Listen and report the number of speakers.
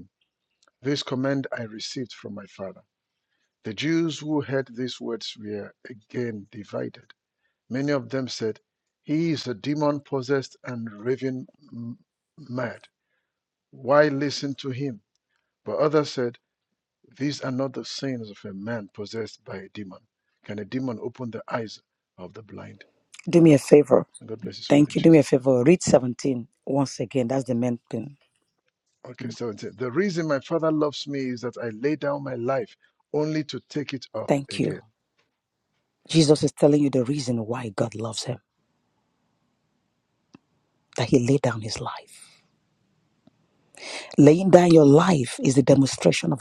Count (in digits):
2